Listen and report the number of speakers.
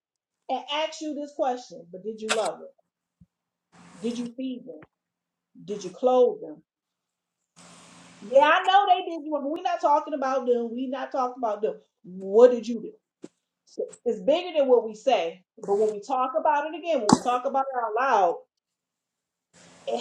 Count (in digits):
1